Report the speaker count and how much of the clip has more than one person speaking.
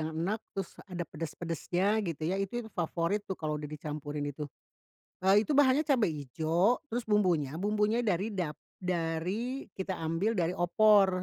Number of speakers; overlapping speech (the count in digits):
1, no overlap